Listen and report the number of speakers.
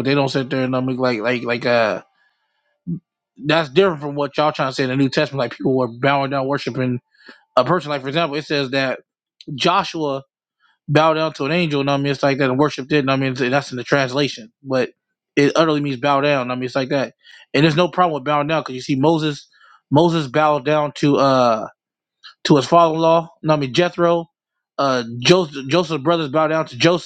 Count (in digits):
1